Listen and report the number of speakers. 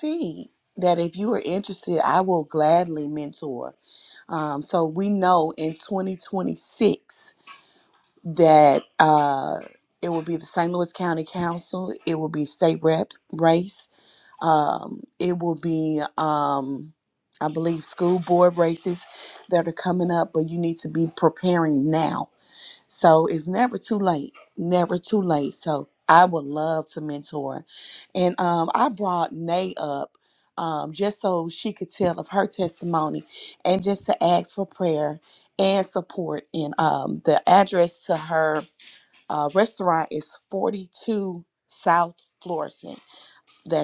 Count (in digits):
1